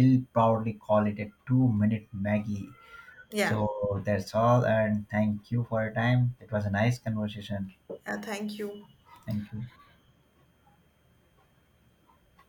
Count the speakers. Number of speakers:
two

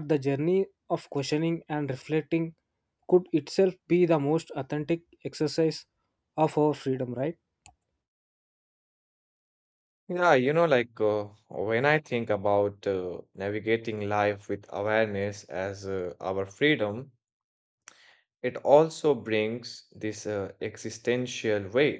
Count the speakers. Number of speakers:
two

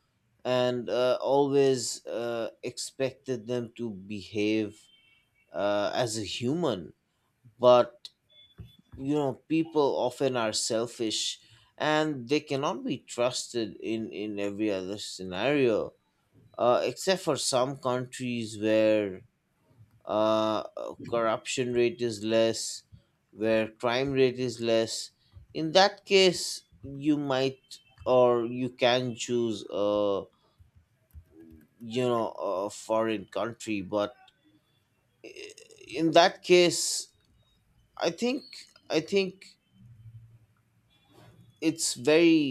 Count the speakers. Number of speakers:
one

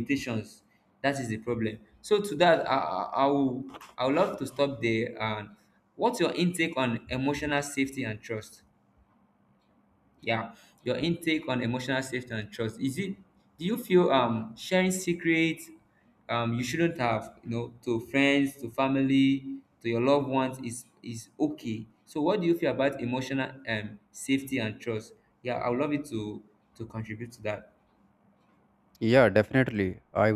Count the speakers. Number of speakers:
two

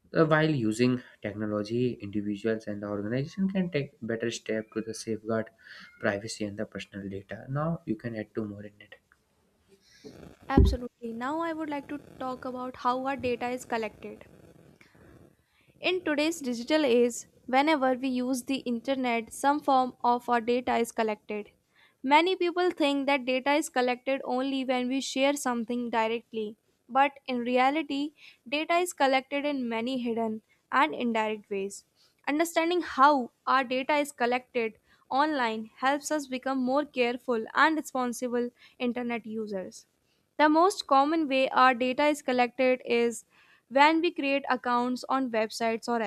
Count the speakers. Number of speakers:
two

